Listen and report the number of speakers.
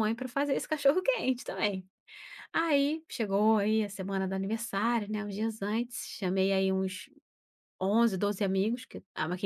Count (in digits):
1